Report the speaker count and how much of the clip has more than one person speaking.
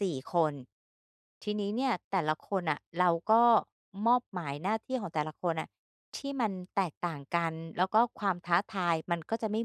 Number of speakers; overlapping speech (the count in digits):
1, no overlap